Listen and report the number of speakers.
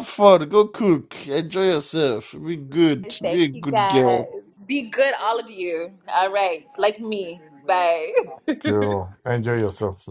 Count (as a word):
three